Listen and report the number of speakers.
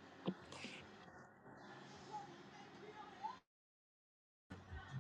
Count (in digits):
0